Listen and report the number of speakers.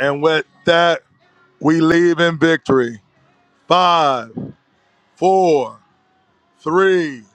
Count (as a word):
one